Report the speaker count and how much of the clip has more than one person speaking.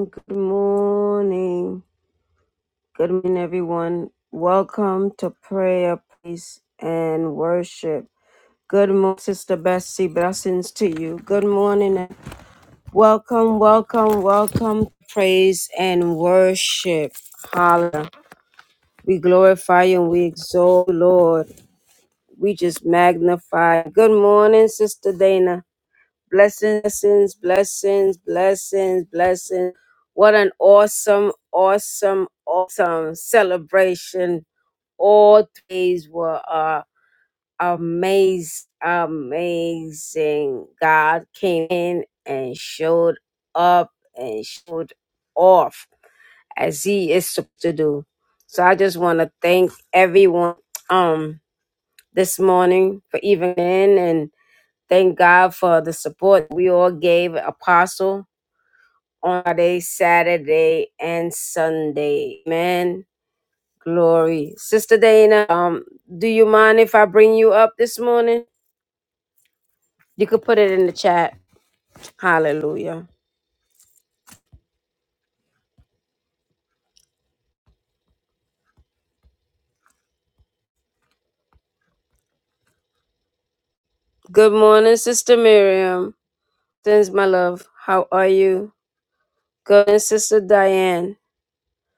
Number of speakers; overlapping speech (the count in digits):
1, no overlap